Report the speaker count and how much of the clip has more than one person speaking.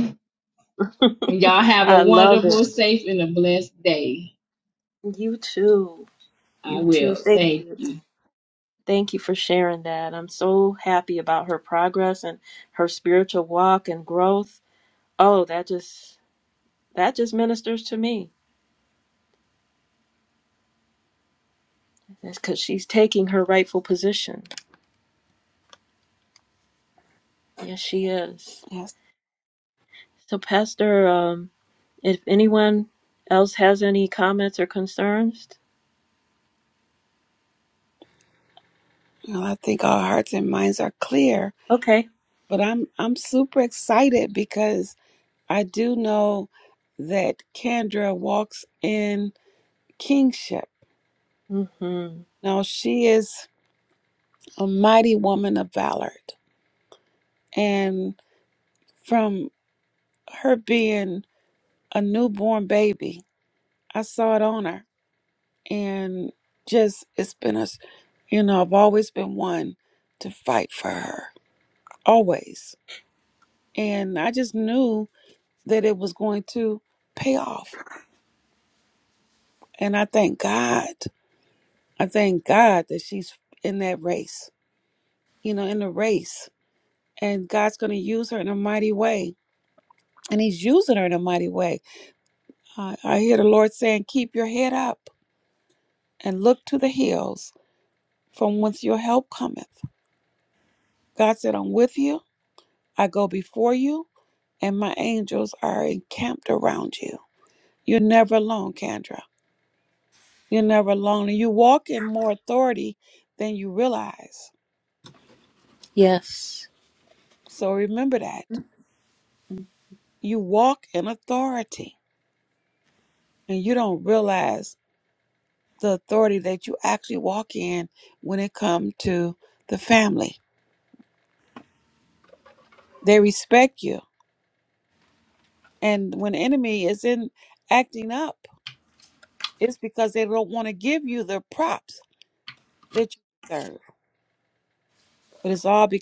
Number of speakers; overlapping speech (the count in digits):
3, about 1%